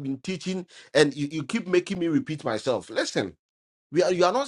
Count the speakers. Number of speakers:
1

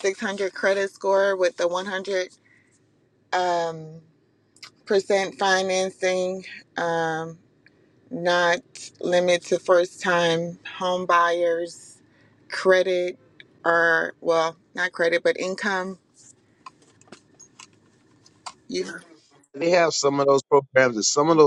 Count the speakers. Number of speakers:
2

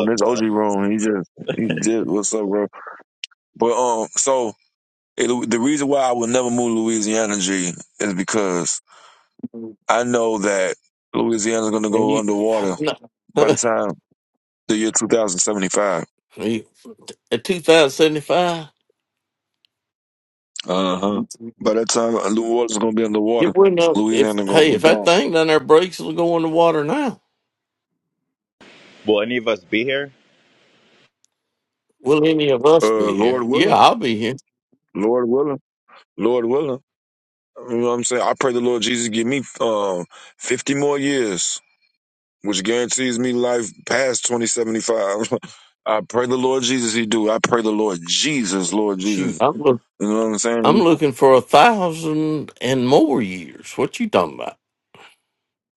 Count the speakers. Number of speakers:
3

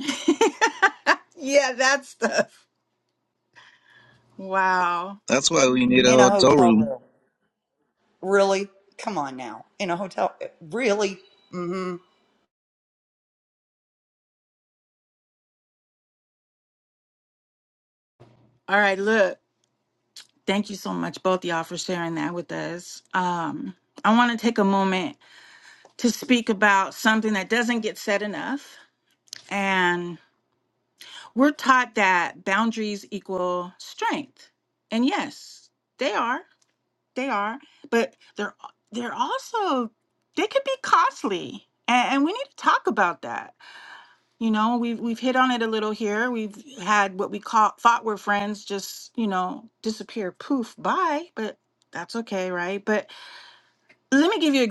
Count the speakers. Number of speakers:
3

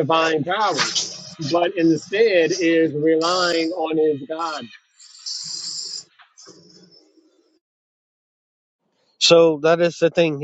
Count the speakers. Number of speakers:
2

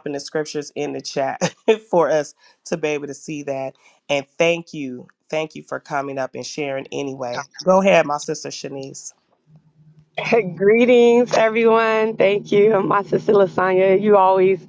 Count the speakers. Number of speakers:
2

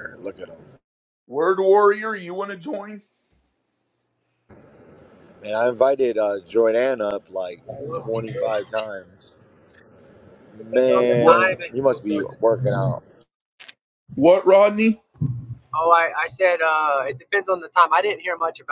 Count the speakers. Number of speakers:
3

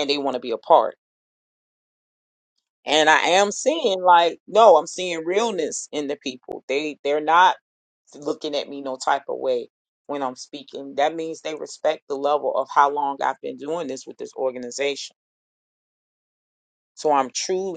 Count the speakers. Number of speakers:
1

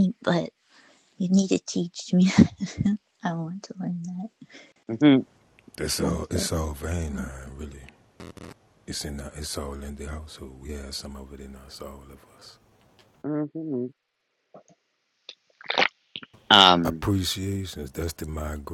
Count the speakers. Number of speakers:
3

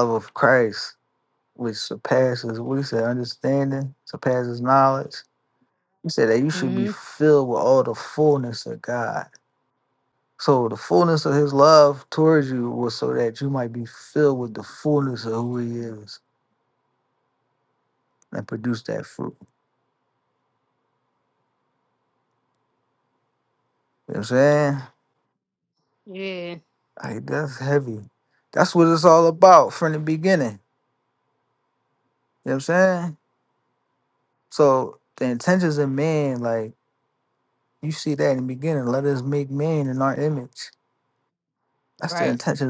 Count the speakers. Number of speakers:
2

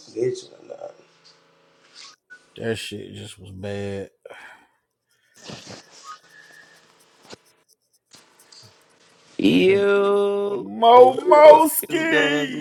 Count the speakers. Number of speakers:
3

